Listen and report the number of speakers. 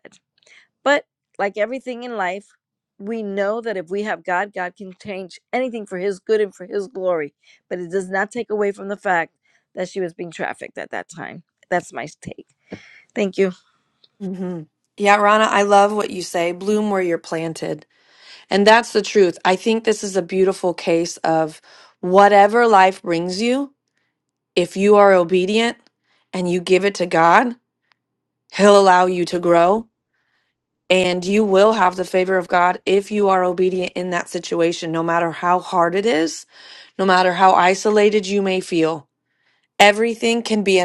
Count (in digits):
2